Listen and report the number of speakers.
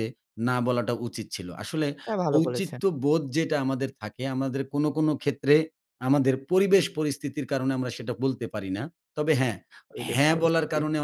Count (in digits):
2